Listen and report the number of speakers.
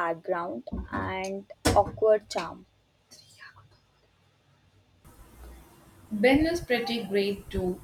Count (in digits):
2